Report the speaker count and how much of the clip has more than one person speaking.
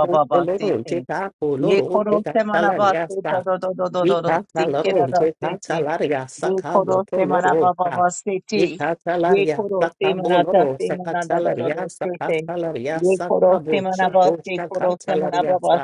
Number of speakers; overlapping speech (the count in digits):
2, about 73%